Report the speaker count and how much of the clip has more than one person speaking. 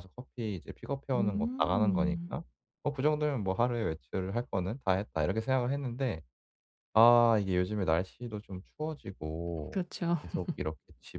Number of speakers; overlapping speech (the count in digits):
2, about 9%